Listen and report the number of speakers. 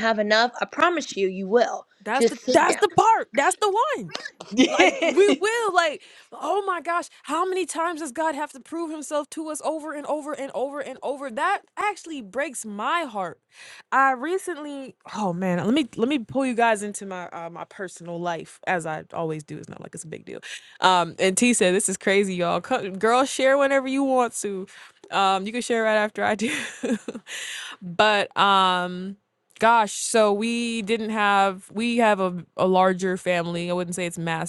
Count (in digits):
2